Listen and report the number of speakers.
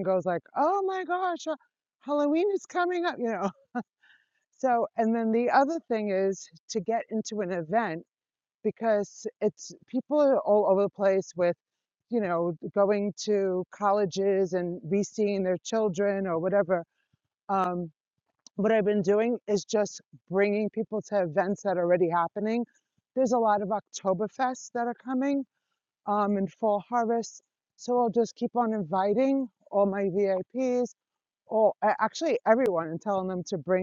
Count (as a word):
one